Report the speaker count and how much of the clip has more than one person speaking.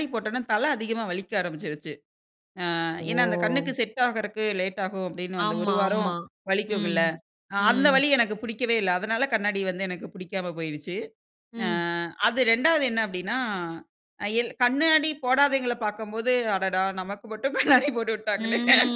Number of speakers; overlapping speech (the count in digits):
2, about 14%